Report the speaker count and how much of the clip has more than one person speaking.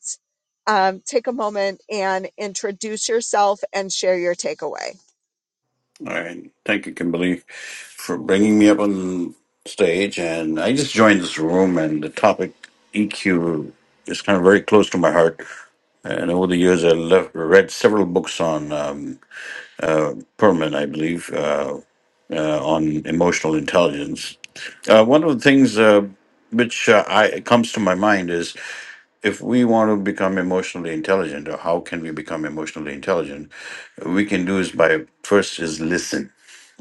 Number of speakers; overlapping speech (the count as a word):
two, no overlap